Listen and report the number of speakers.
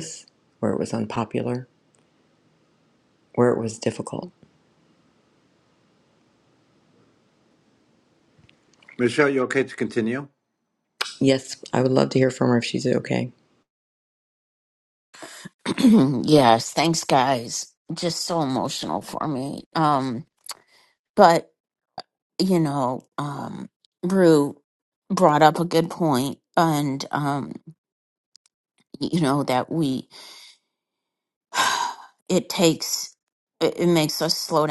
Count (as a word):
three